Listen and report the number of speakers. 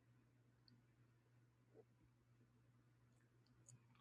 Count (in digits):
0